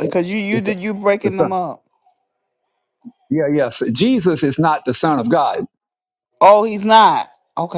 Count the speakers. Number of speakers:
two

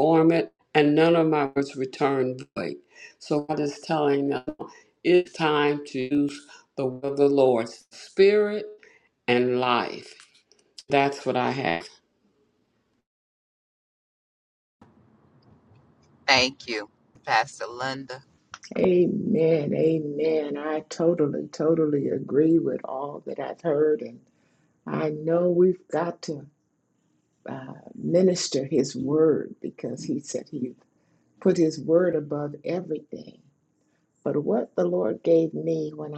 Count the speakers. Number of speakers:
three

